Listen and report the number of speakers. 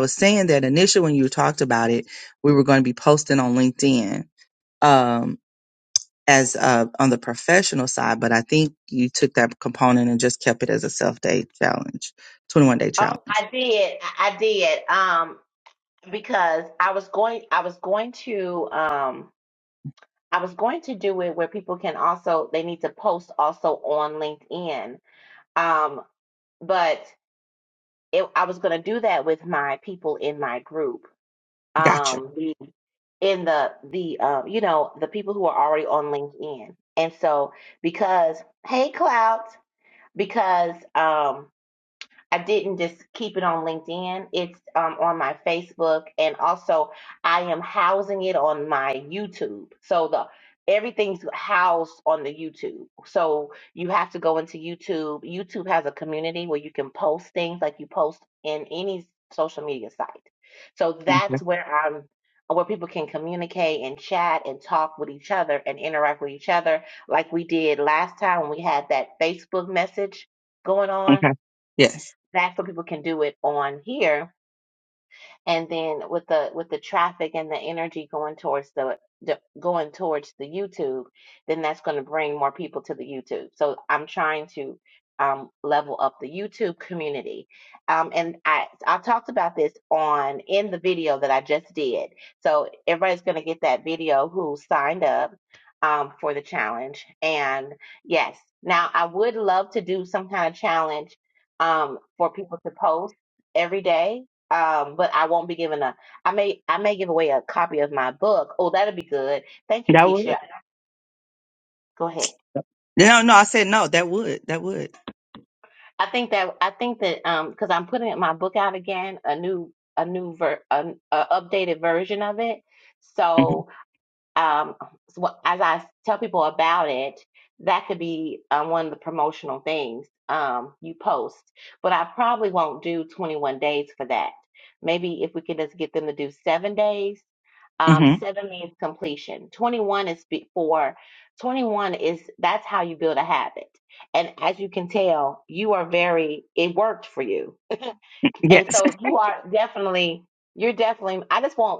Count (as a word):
two